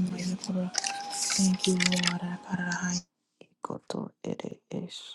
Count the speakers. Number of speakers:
2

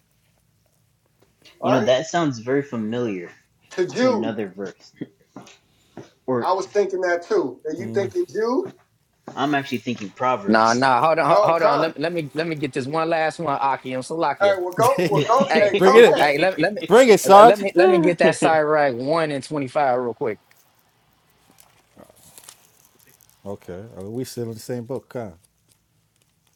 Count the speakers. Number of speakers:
4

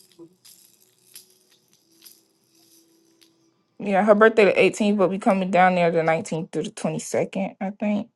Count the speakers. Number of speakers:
1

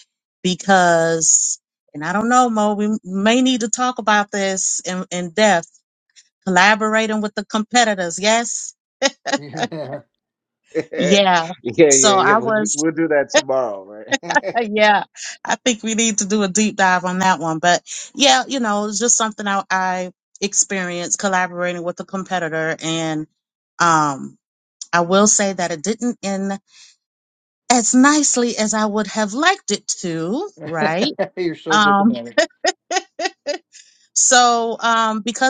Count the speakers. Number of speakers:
3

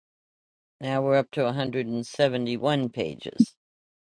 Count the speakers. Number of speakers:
1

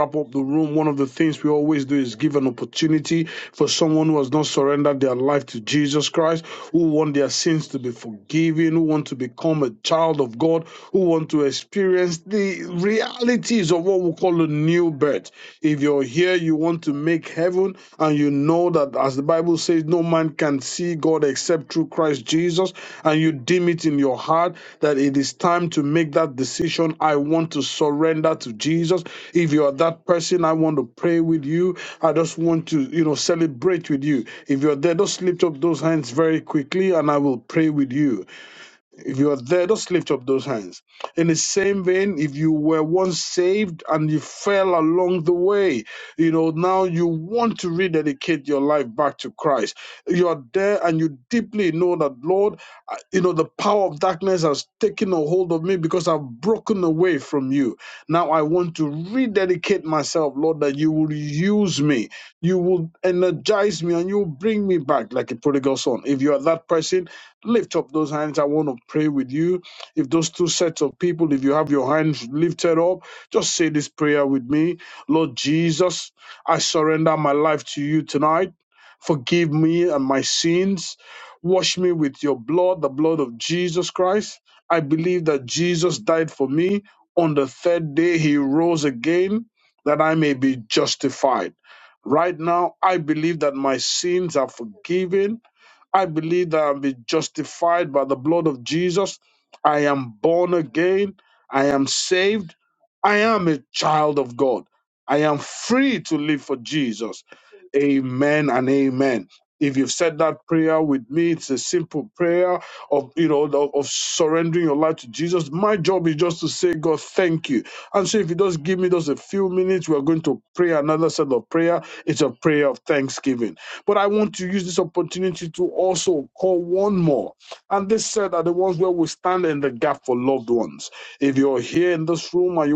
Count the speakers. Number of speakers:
1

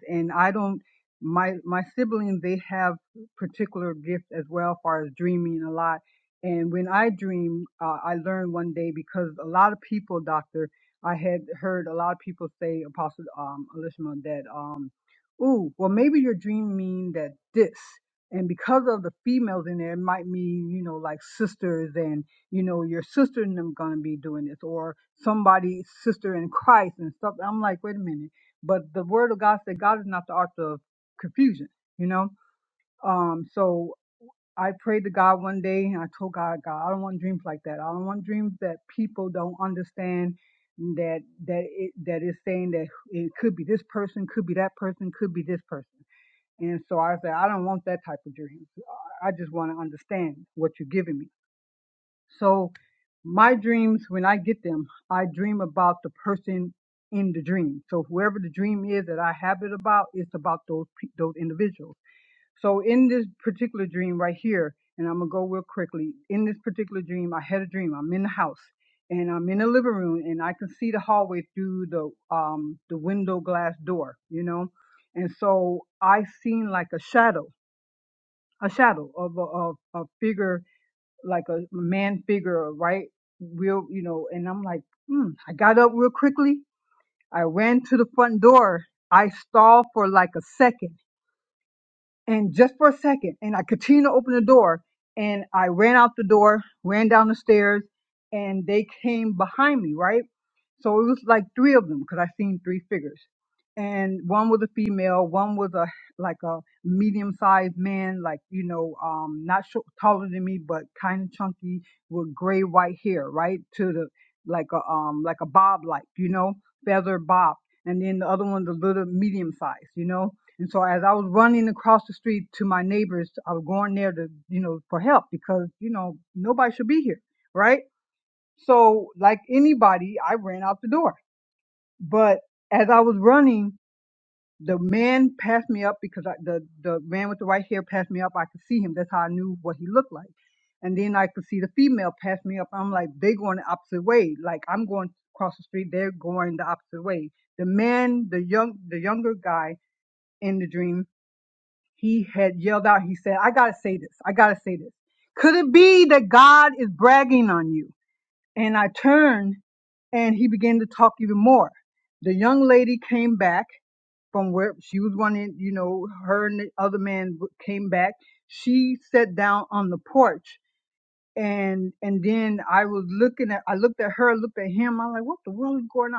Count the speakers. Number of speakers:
1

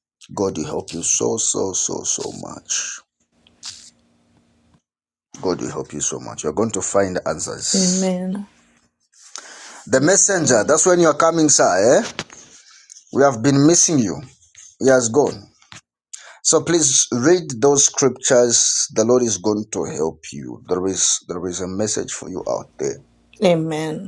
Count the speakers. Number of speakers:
2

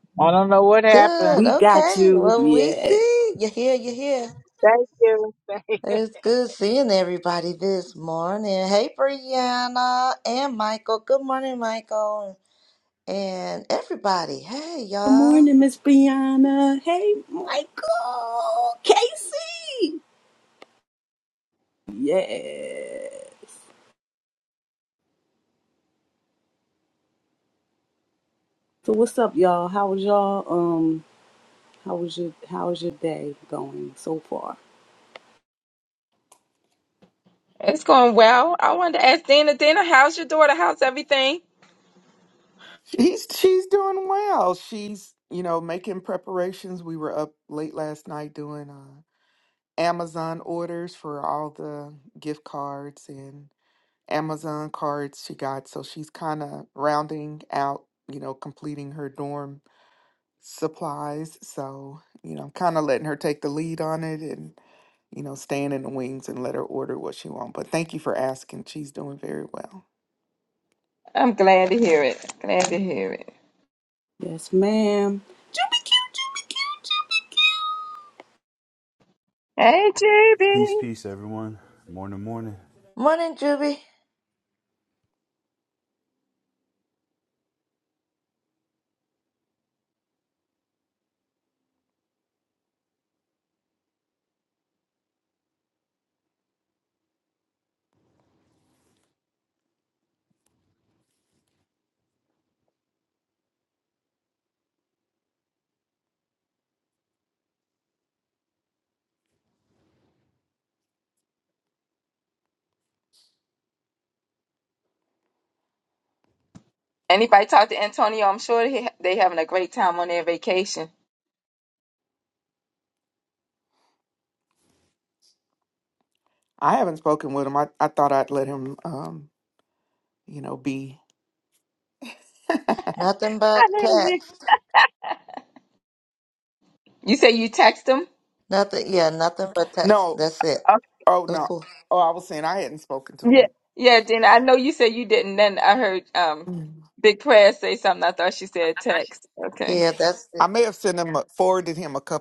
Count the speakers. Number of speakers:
6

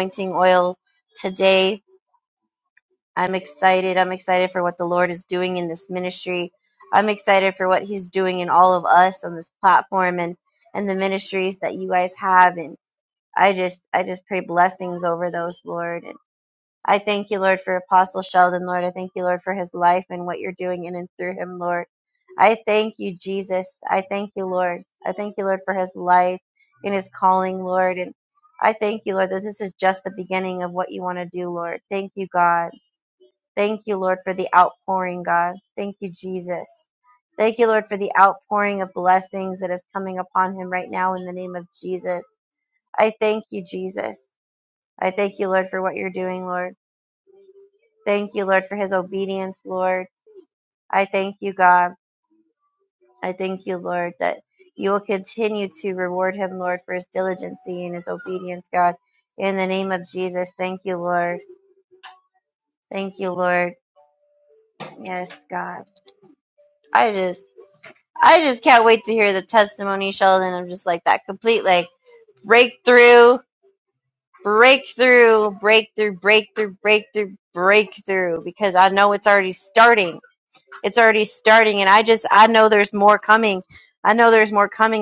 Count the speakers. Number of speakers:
1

